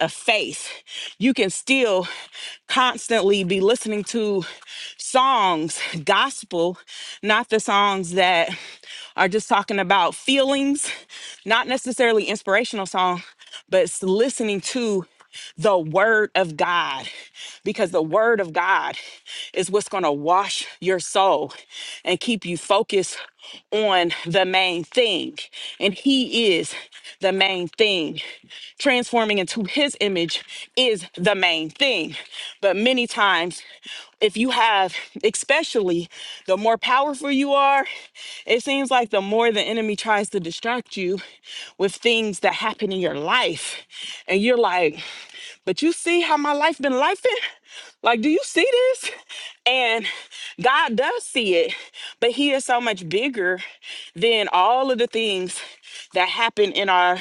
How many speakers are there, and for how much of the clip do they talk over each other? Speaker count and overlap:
1, no overlap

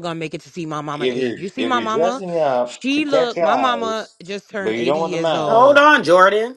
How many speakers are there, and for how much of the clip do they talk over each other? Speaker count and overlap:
3, about 56%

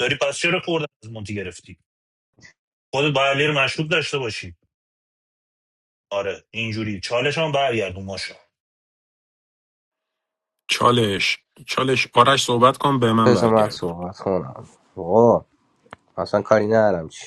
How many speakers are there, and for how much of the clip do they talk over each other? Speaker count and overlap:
3, about 3%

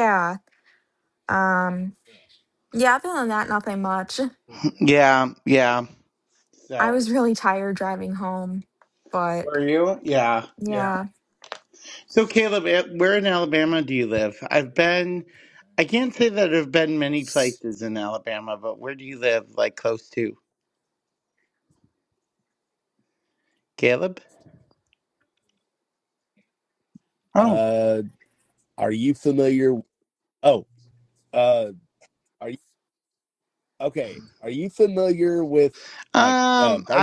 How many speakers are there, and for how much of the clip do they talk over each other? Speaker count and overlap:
3, about 4%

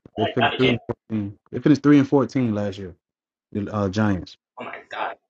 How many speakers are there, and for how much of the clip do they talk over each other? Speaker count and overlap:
2, about 15%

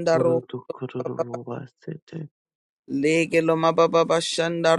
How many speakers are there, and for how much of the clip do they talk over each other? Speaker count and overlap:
2, about 2%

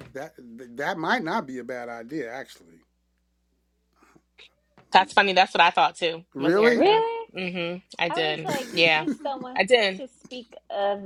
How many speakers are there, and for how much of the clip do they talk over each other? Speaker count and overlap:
3, about 15%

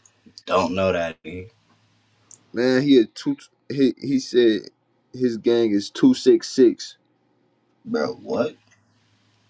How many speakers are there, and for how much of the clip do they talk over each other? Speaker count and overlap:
2, no overlap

